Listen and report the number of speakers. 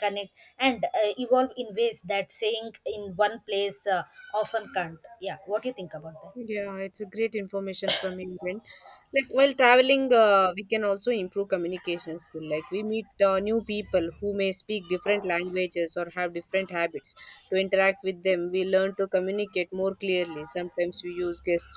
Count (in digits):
2